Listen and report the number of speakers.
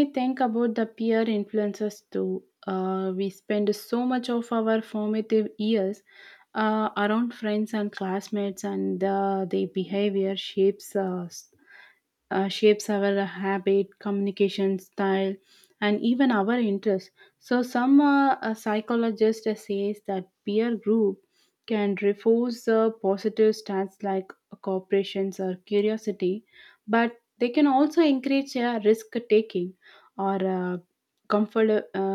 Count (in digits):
1